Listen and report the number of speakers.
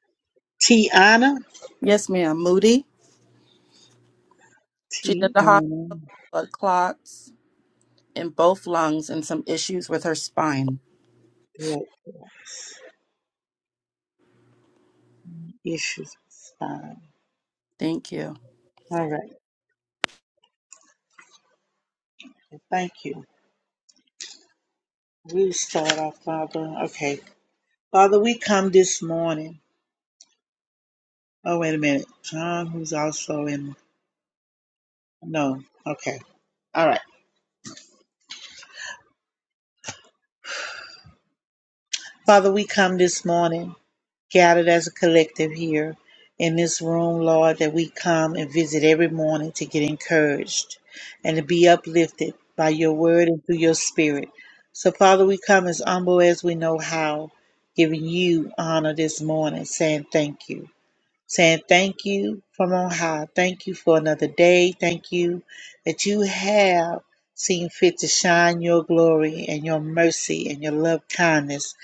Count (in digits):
2